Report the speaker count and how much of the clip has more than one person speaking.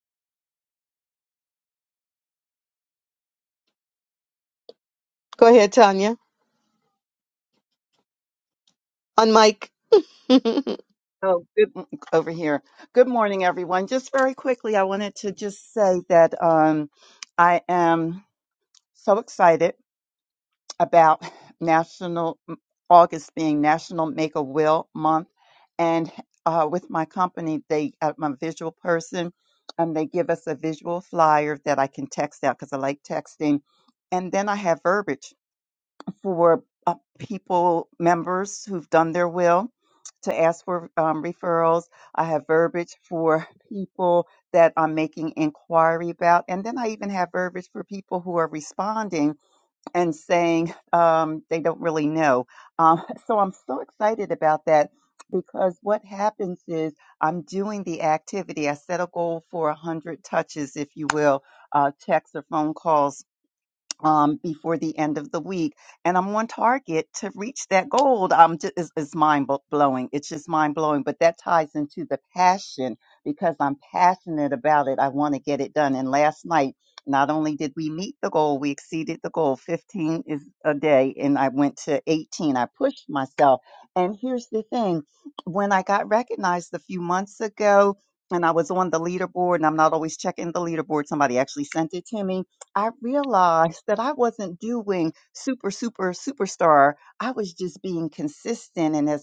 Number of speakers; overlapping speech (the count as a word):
two, no overlap